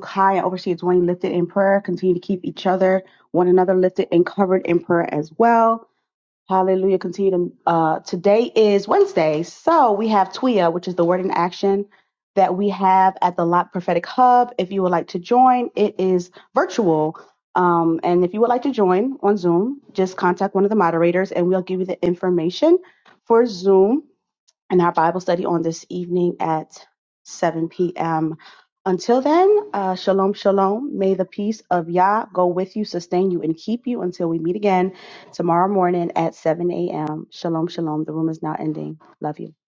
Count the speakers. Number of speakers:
1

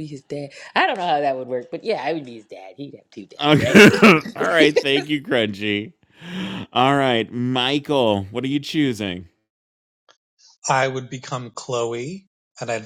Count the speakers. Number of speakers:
3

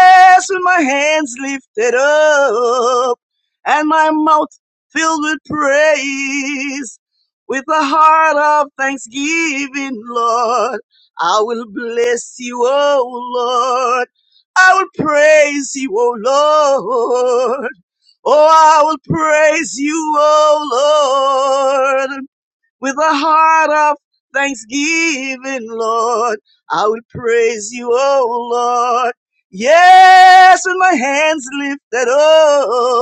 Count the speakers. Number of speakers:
1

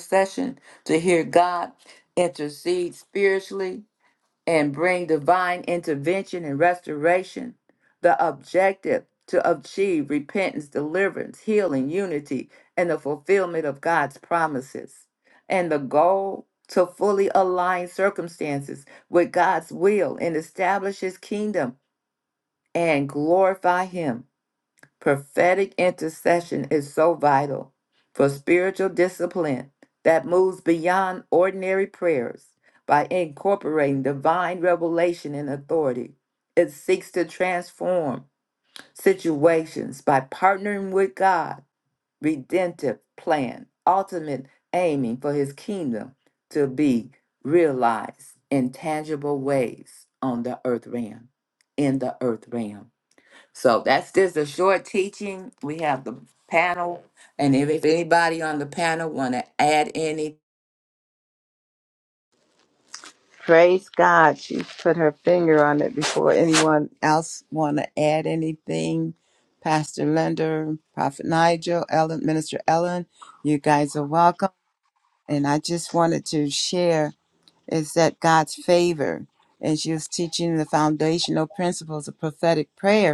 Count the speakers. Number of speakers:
2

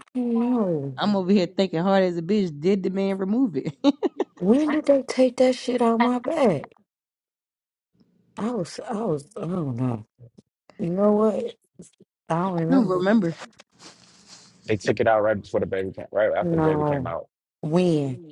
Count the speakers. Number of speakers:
3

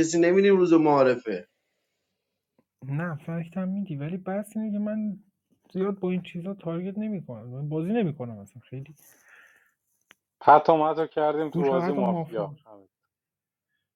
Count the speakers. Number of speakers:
3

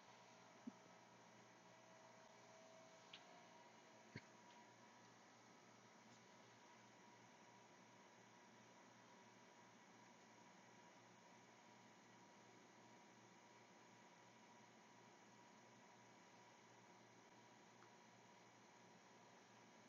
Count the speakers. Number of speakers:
0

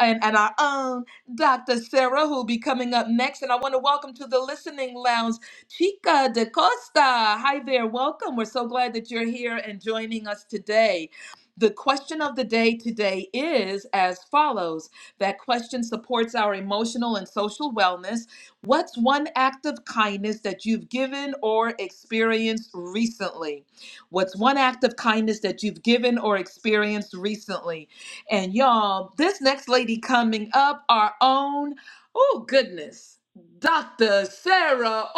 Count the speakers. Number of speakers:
1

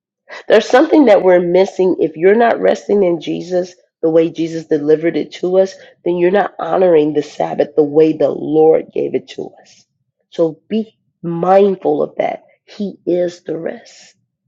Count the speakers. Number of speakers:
1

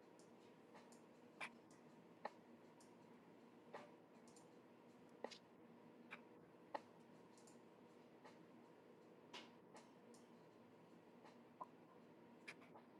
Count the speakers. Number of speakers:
0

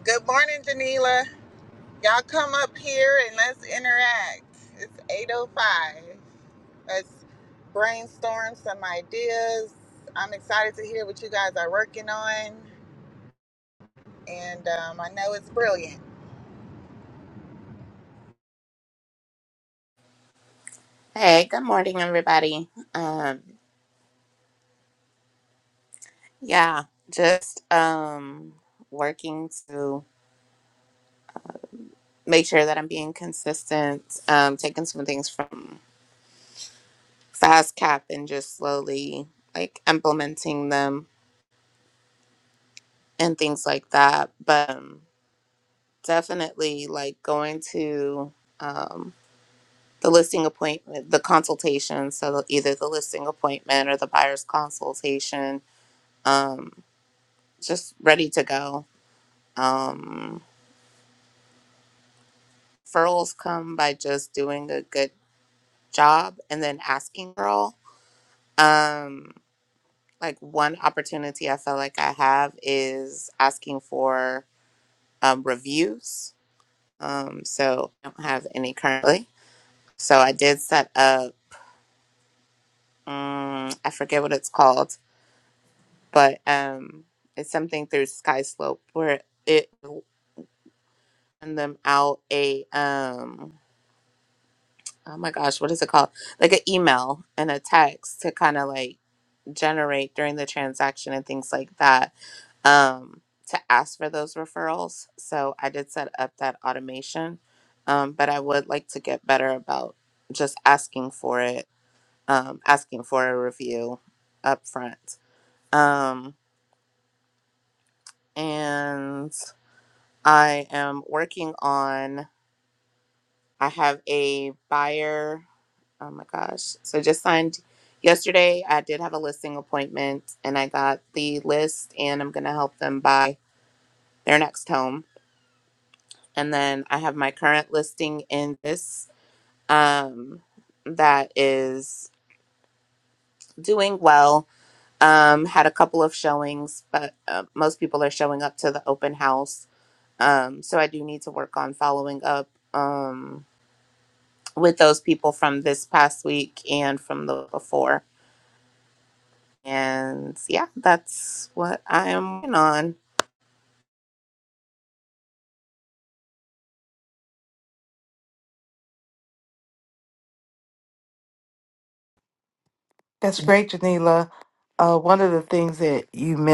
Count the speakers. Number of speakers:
3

